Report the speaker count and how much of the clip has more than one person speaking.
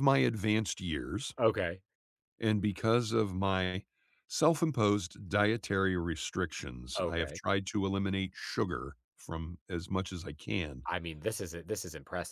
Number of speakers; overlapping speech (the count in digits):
2, about 3%